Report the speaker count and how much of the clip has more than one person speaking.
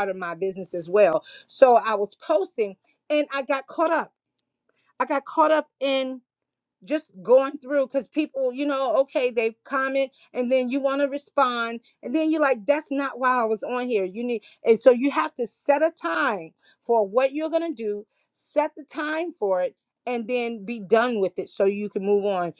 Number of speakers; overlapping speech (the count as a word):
one, no overlap